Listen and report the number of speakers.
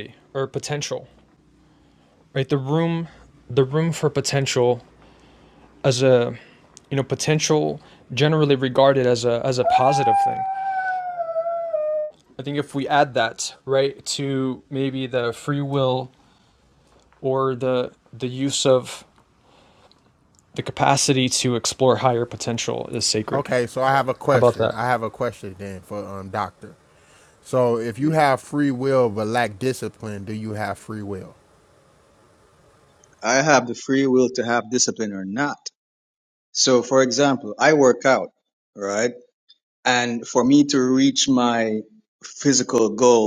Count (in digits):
3